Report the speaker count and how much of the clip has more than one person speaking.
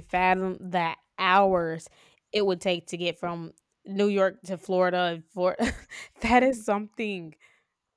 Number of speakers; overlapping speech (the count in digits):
1, no overlap